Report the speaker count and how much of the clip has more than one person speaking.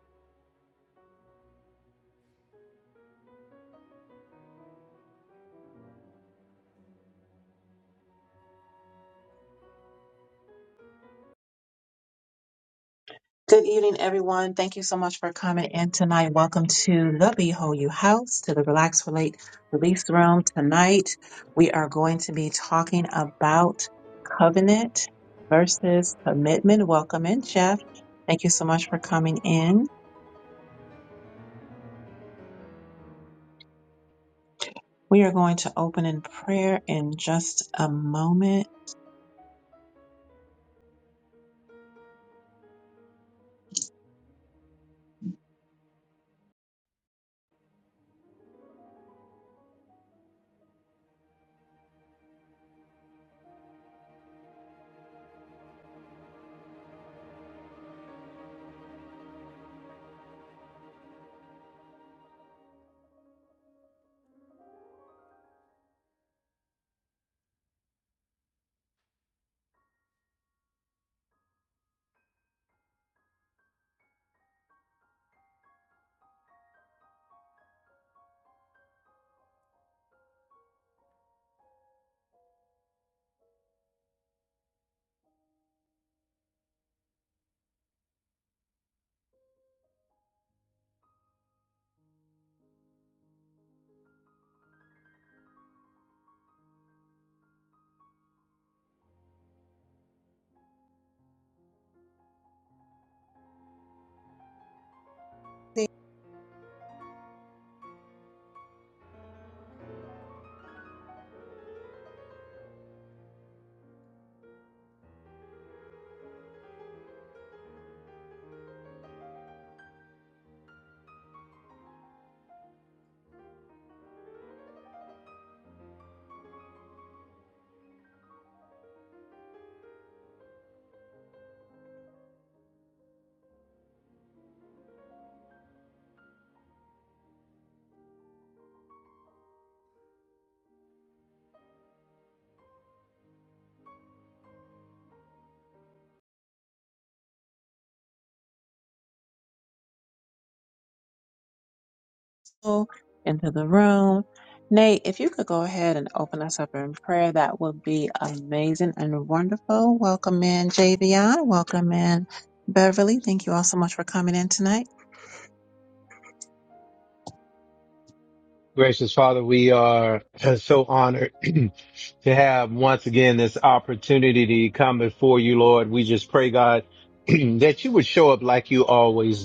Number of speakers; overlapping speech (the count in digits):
2, no overlap